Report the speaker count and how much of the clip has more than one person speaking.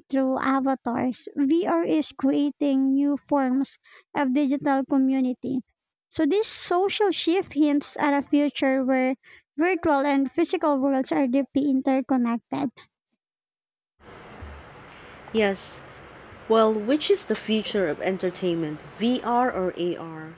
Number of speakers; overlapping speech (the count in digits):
2, no overlap